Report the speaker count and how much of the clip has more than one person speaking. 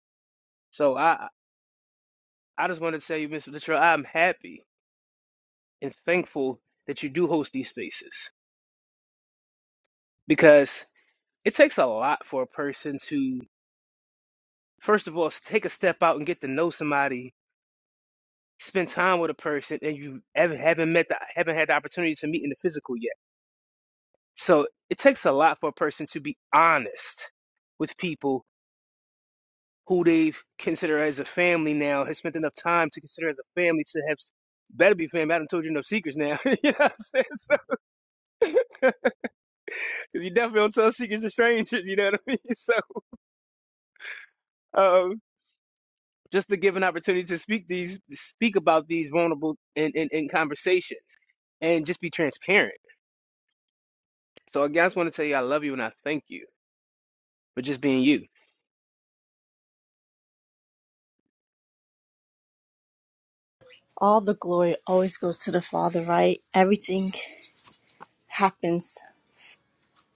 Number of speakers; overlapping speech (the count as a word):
two, no overlap